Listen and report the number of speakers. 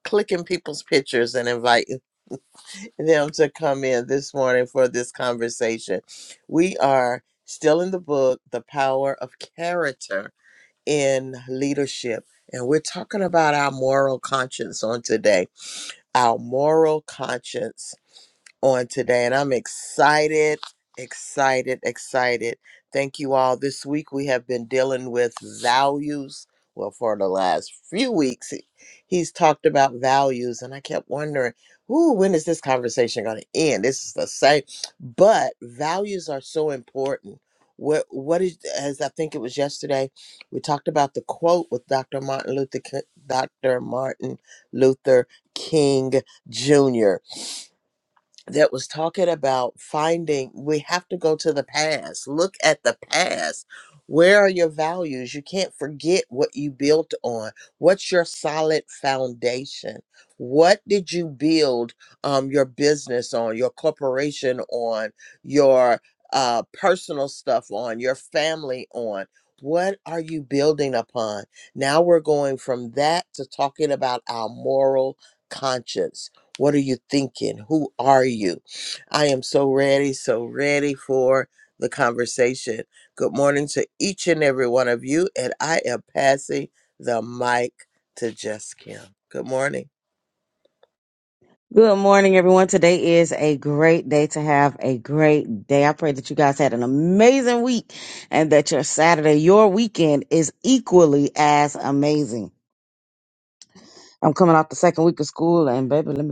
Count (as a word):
two